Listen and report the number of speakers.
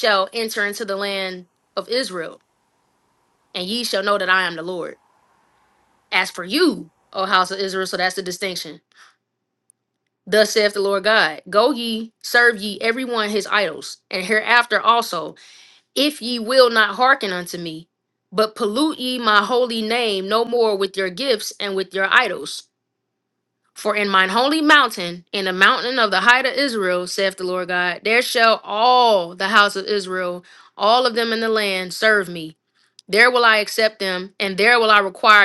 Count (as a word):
one